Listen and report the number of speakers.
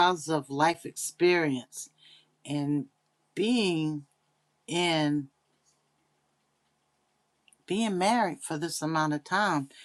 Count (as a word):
one